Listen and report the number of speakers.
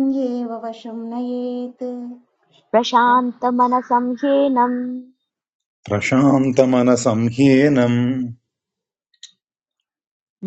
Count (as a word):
three